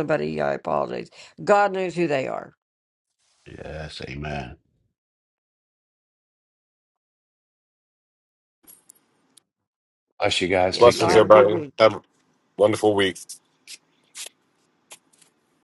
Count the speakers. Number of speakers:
4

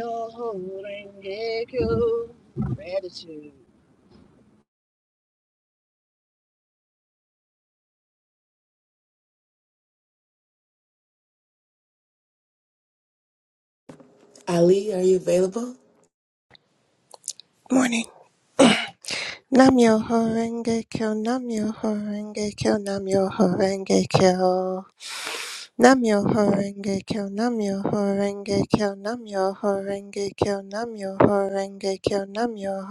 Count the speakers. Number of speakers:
3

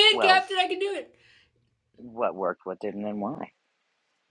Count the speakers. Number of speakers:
2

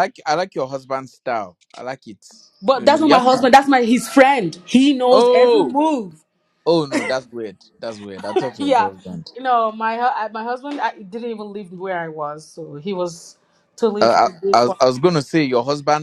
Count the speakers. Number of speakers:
2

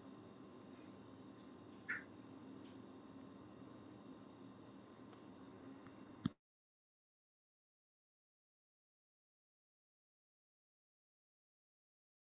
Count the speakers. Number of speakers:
0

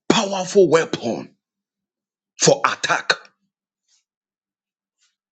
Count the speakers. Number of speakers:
1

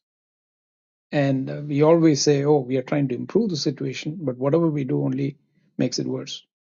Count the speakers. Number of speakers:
1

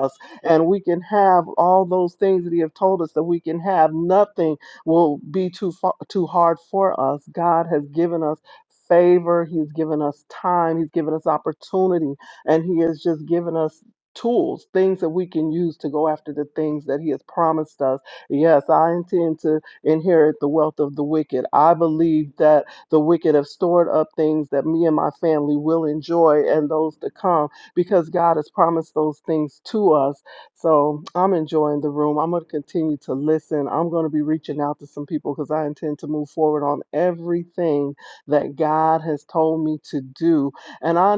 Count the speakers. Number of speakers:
1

